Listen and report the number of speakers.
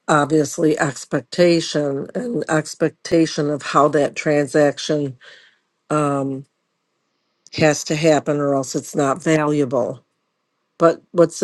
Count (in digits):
1